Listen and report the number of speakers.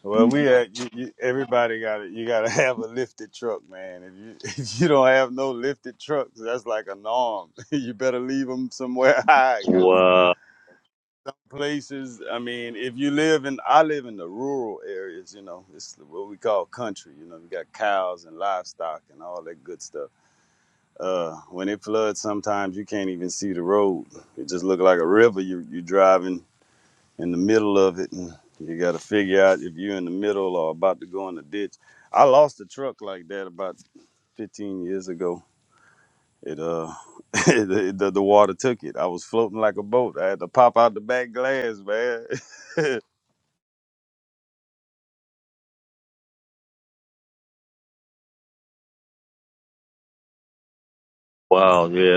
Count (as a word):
two